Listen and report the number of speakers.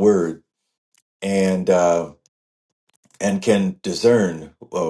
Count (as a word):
one